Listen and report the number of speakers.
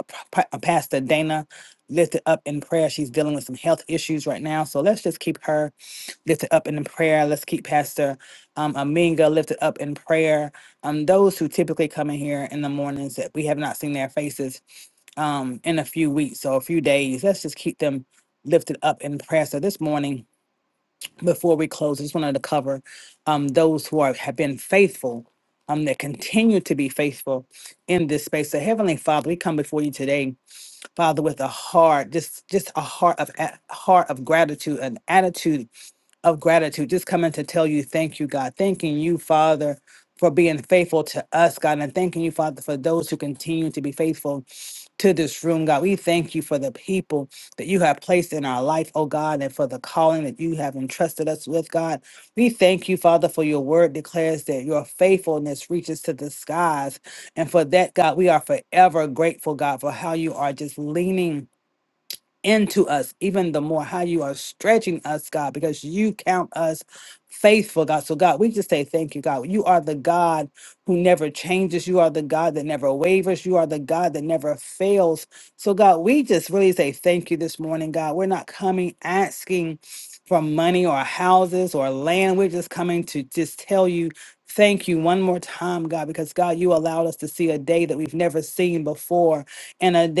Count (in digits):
1